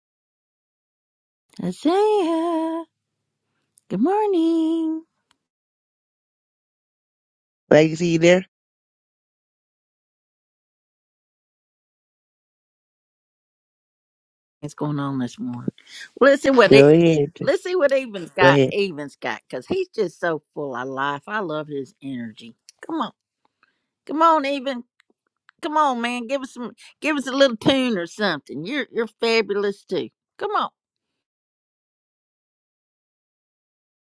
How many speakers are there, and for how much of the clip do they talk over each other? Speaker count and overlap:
2, about 2%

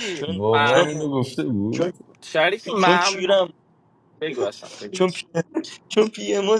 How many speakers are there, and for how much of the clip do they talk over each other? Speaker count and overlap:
3, about 24%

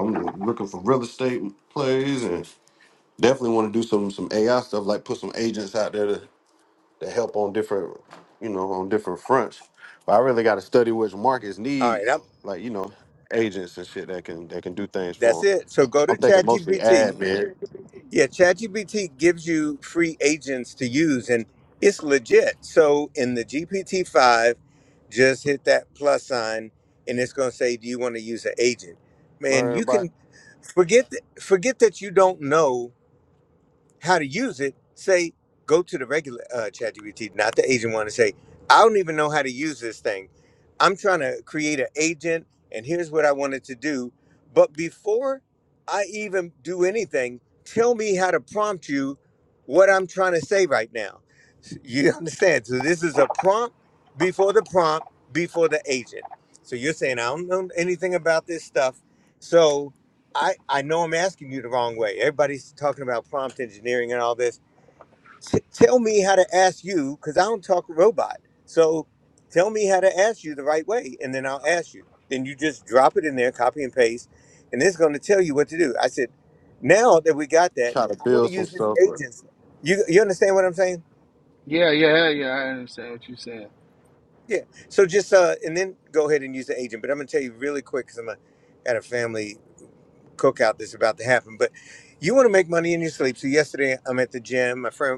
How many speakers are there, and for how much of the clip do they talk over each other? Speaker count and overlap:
3, about 3%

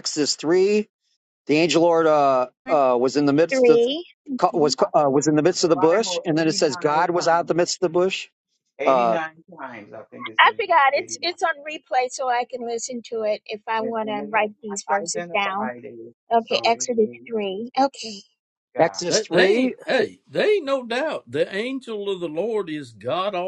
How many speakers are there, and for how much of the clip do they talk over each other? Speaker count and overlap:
4, about 33%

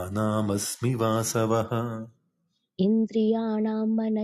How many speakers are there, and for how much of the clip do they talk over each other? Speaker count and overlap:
2, no overlap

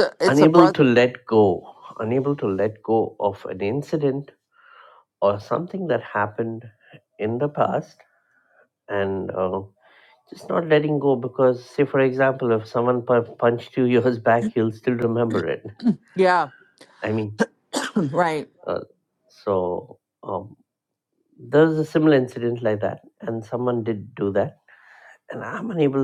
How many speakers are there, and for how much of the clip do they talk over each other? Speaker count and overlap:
2, about 2%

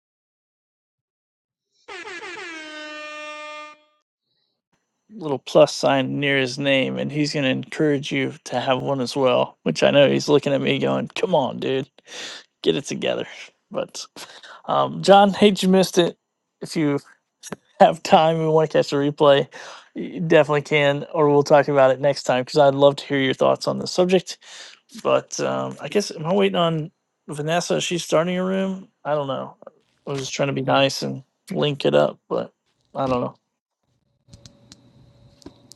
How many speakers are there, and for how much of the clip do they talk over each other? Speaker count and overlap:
1, no overlap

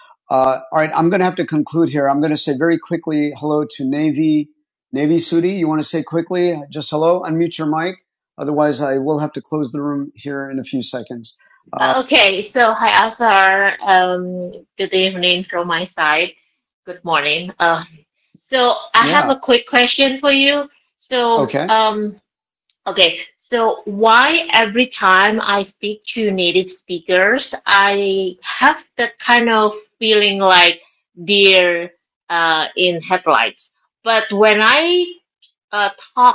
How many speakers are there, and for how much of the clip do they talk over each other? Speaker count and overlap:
2, about 2%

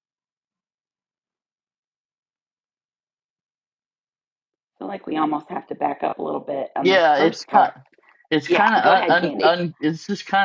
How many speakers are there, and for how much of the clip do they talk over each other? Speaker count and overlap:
2, about 19%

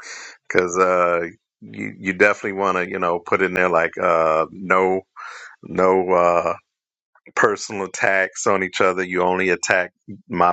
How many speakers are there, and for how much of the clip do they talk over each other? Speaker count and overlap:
1, no overlap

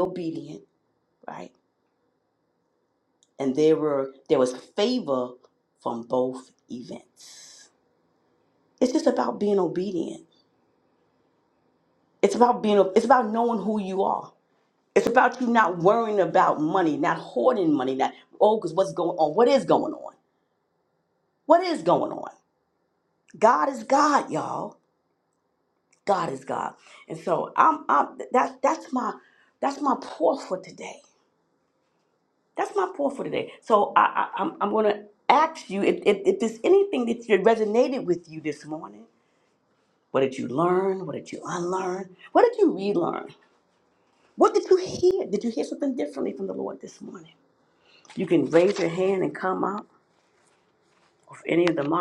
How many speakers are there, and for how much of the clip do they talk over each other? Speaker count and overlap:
1, no overlap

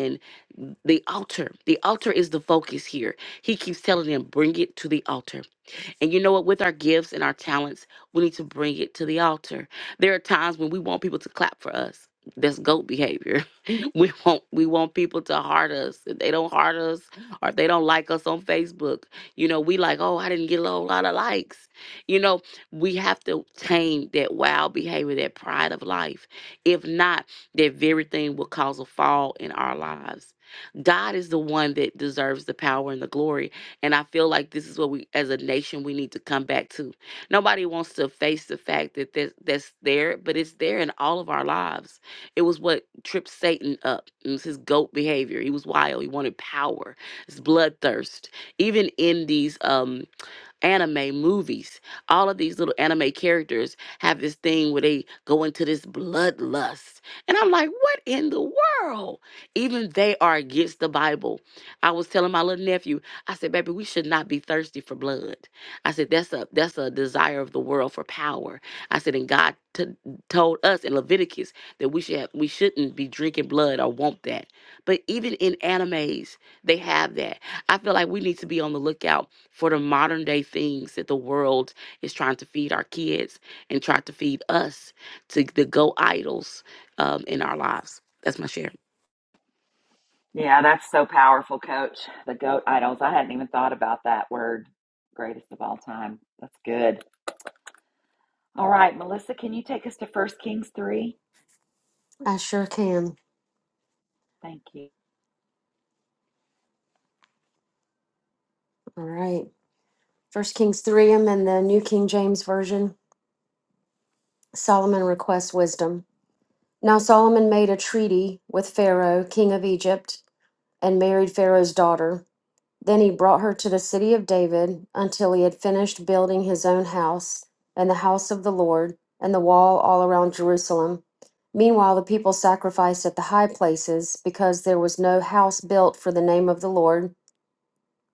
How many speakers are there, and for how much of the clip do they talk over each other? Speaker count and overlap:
3, no overlap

